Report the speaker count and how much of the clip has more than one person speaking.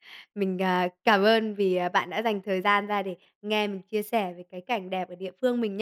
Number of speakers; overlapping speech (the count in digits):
1, no overlap